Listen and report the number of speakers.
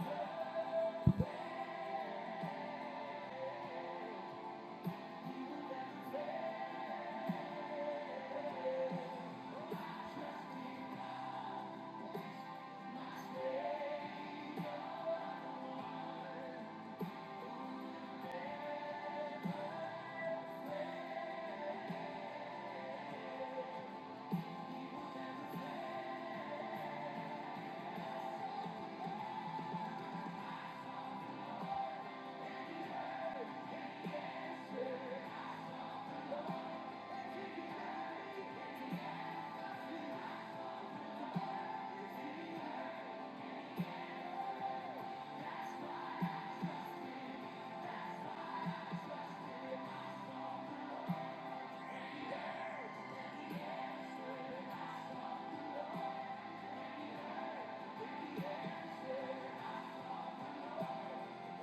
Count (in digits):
0